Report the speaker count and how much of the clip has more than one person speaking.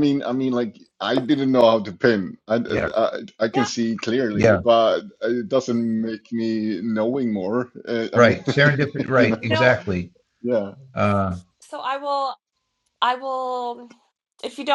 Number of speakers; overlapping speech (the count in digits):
3, about 10%